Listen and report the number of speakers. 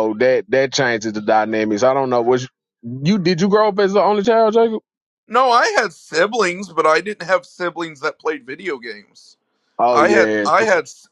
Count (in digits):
2